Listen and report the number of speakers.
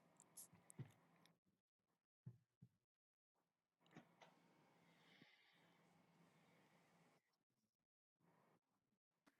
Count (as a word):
zero